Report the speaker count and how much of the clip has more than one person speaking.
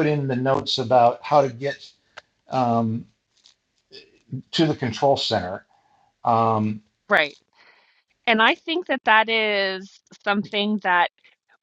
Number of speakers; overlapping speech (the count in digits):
2, no overlap